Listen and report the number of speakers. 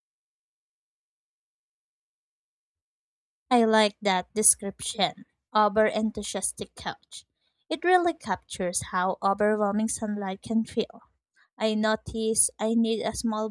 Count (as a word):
one